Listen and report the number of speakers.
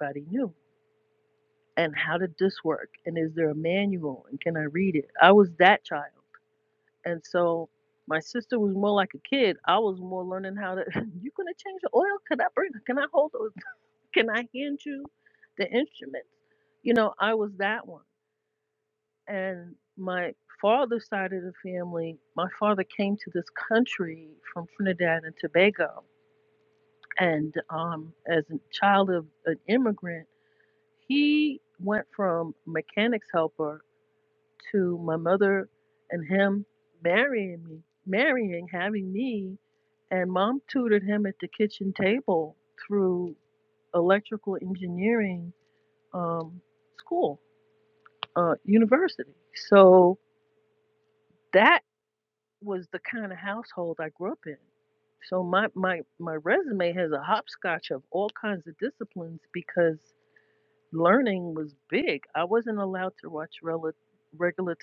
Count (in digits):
1